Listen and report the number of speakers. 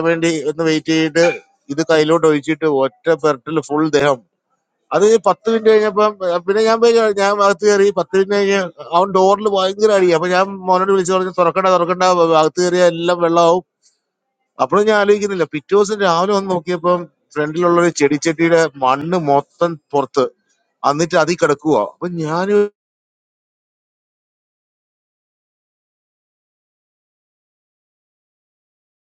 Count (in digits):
1